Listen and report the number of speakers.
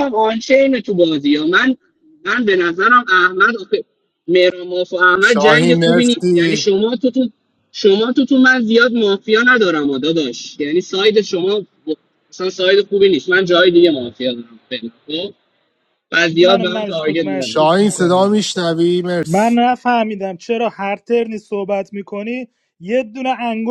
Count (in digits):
3